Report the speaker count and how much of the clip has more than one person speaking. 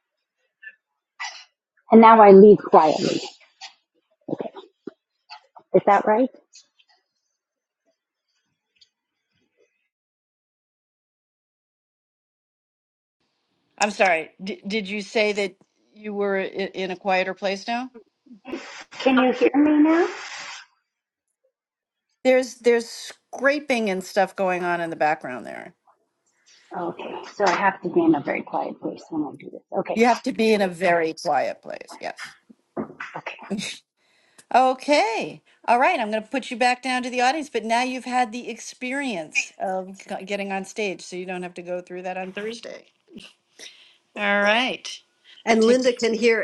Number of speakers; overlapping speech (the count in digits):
3, about 1%